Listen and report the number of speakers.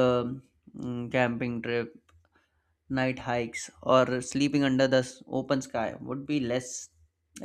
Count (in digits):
1